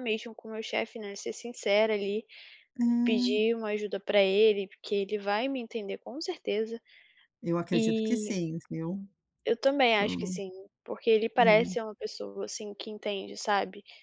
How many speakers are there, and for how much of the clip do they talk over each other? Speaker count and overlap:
2, about 12%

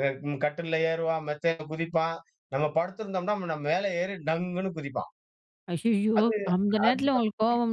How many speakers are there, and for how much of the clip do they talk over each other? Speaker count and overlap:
2, about 5%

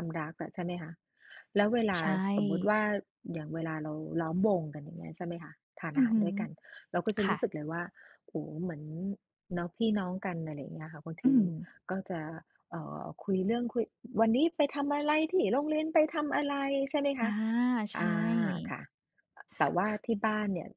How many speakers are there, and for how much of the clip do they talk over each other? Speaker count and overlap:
2, about 5%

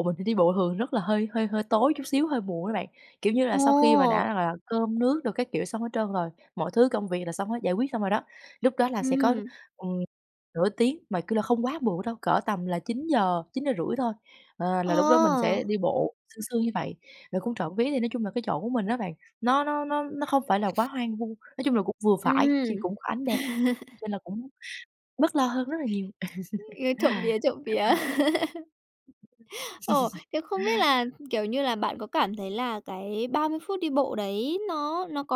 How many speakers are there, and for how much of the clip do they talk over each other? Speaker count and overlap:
2, about 6%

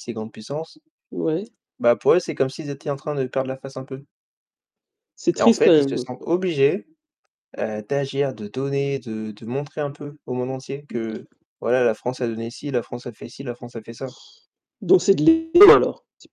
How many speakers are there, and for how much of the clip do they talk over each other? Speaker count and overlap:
2, about 5%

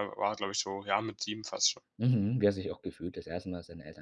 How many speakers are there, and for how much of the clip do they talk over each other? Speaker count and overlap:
2, no overlap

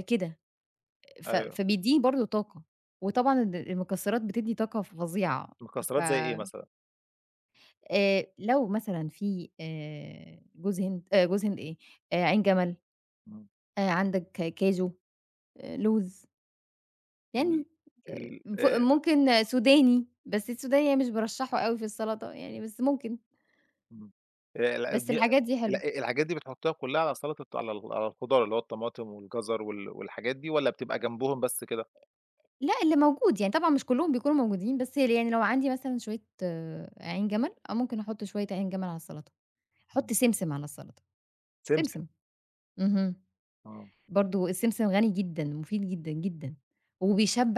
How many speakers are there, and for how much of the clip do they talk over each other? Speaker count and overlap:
2, about 5%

